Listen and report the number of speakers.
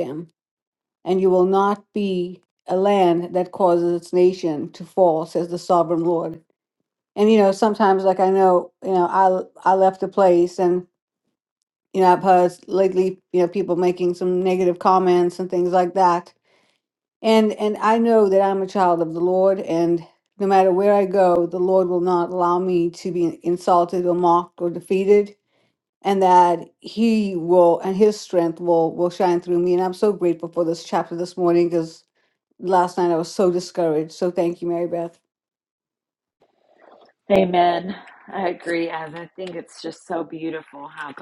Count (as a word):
two